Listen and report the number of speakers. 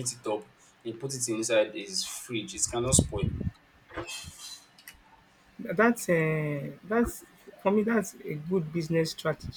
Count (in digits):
2